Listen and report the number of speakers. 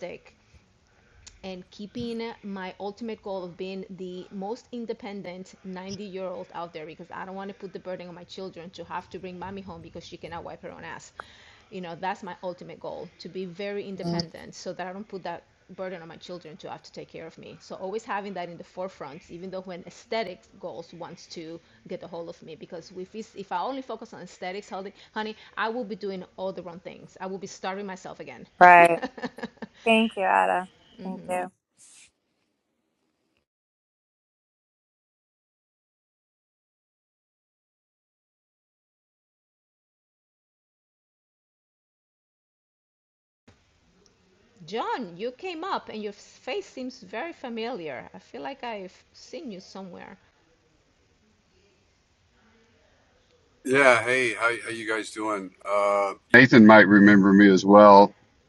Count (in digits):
3